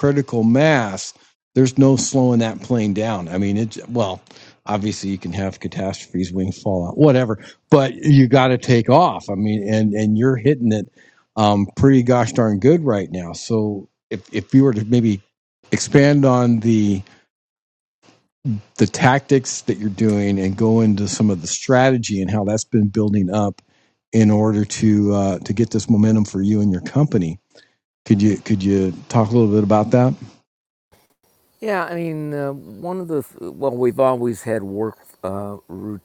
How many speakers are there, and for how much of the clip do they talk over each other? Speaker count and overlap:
two, no overlap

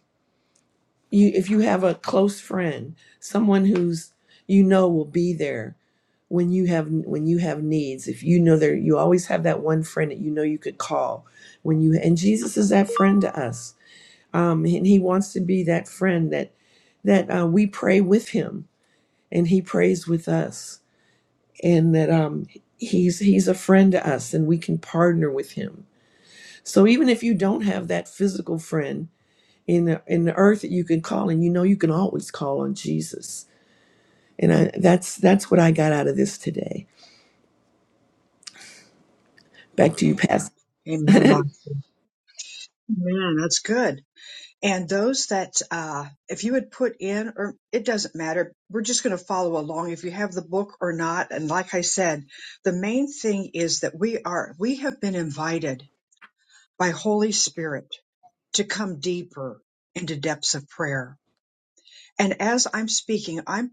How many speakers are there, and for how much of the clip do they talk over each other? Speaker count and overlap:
two, no overlap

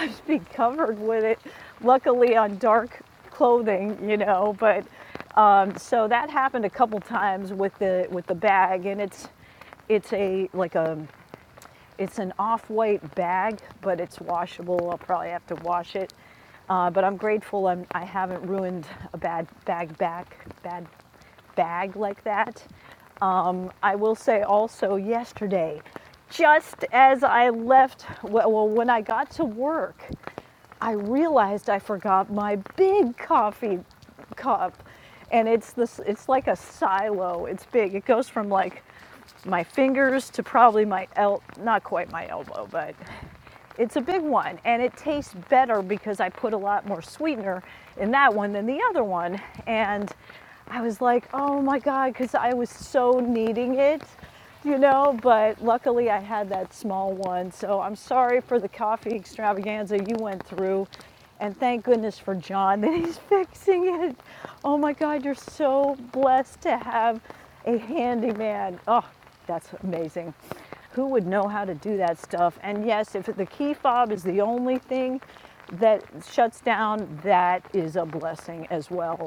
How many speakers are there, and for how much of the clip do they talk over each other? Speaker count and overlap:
one, no overlap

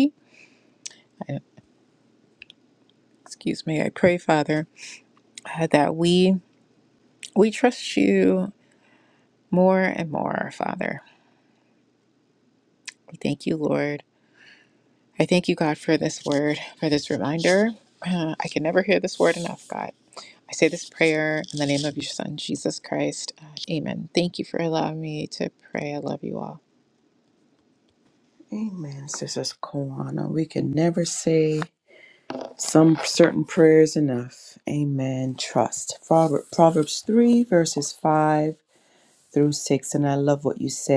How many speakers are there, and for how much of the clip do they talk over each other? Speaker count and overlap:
two, no overlap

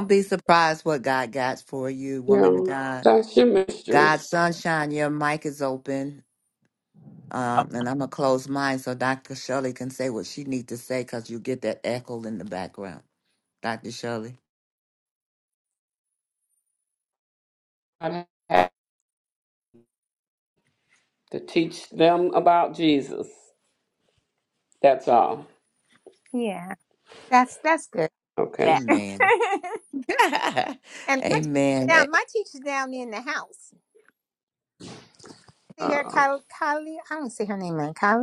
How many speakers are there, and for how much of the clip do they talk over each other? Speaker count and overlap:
three, about 5%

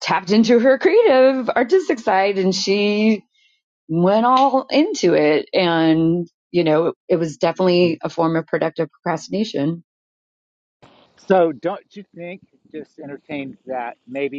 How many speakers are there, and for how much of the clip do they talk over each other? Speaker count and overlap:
two, no overlap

